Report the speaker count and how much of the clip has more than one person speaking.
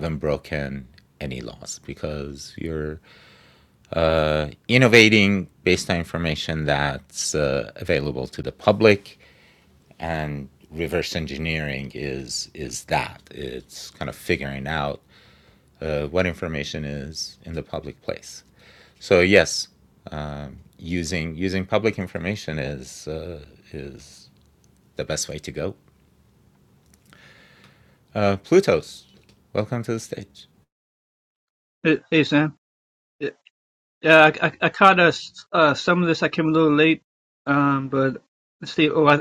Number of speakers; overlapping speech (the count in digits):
2, no overlap